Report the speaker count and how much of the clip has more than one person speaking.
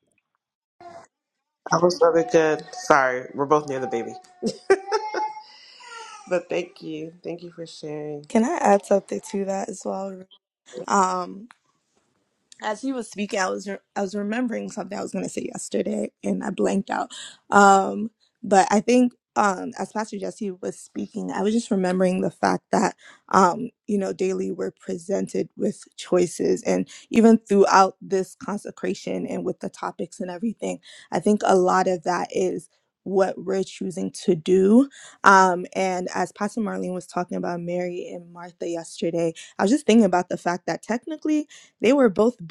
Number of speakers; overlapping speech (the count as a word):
two, no overlap